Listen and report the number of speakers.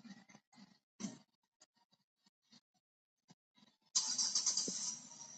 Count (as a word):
zero